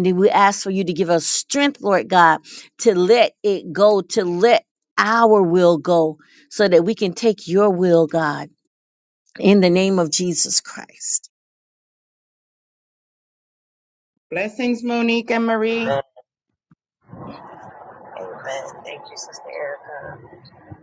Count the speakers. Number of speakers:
3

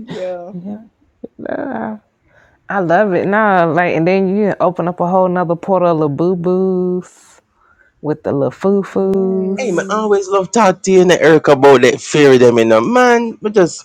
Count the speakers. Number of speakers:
3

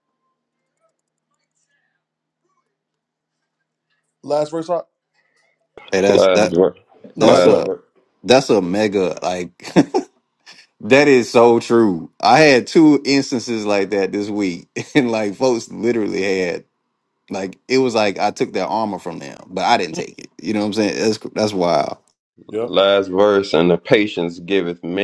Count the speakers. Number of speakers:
3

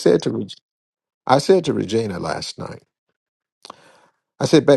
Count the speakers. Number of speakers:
1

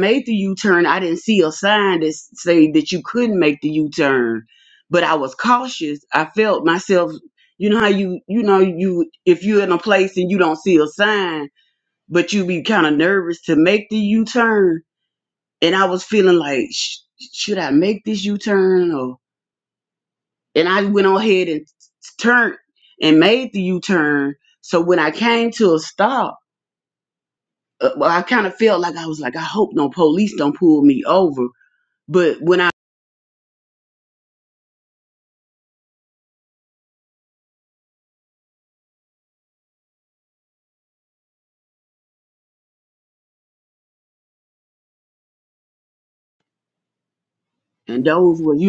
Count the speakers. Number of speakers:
1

